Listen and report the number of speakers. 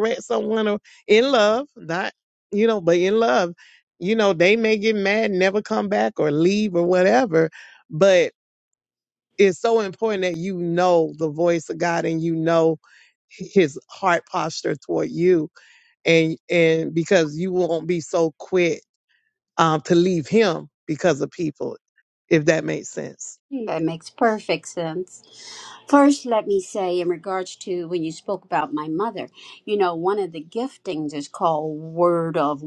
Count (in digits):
2